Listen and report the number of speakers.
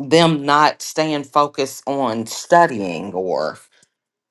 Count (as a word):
one